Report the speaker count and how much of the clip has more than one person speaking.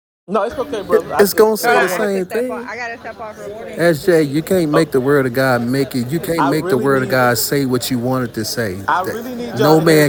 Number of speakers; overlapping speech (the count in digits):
3, about 37%